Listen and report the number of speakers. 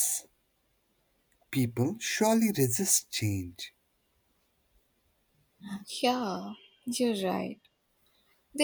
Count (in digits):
2